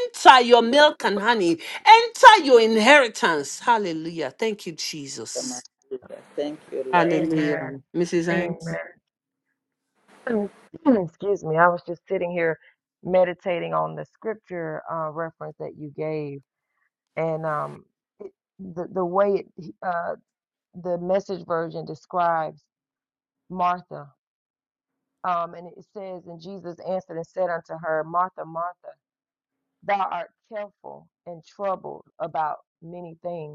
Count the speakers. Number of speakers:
3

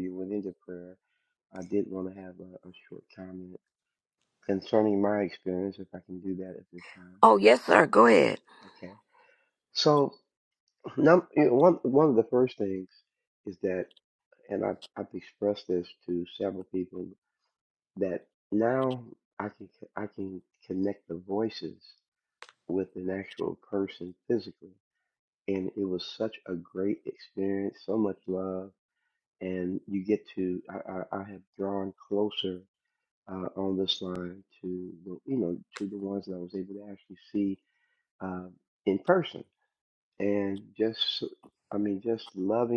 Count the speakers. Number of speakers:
2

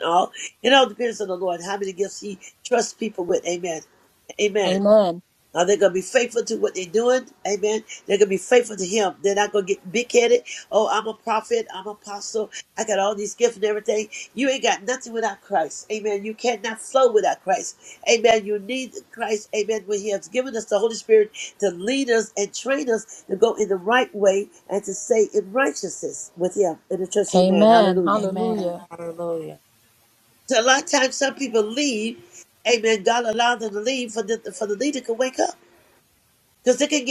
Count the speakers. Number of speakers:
3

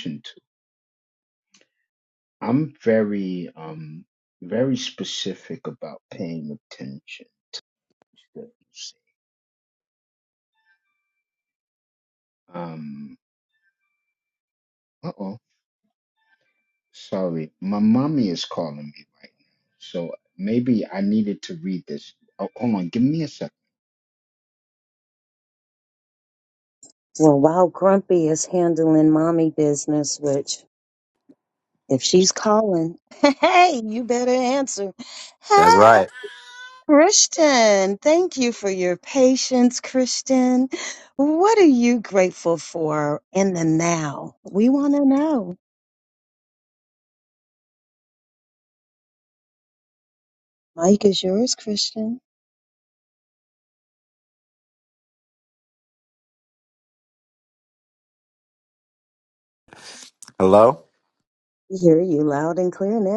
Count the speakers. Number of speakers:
3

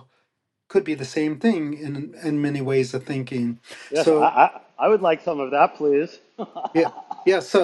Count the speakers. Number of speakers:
2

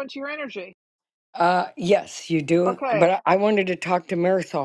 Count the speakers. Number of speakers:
2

